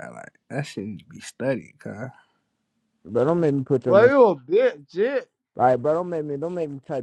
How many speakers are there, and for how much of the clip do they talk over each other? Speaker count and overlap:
three, about 3%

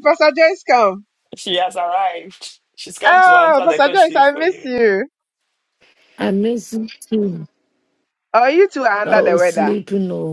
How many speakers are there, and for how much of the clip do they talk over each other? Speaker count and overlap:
three, about 22%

